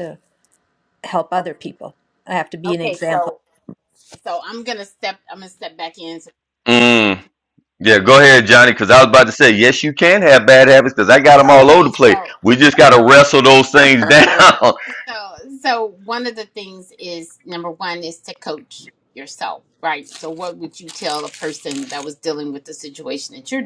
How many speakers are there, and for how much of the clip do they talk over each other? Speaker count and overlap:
3, about 7%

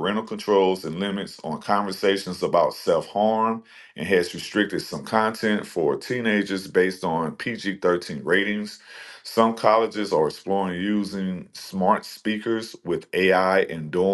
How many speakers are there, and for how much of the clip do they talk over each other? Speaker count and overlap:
1, no overlap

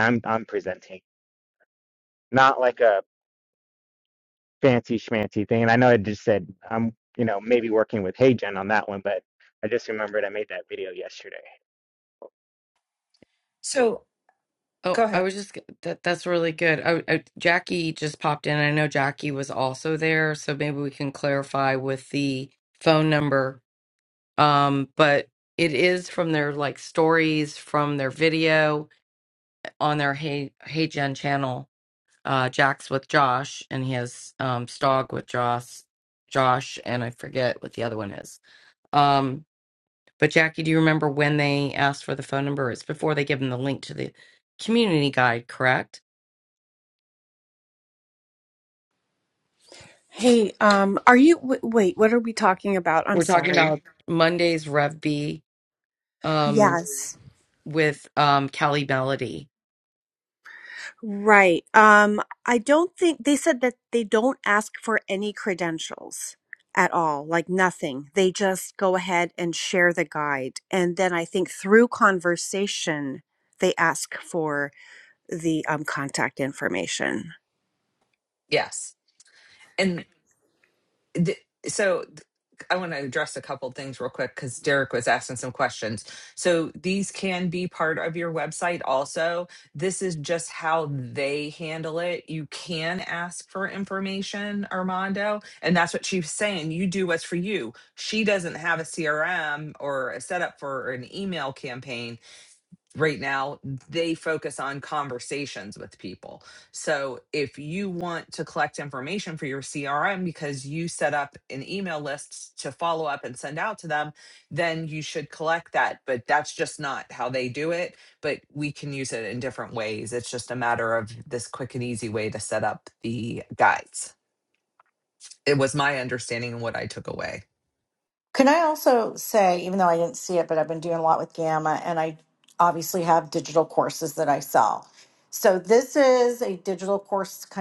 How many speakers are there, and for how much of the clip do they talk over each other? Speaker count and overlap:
5, about 1%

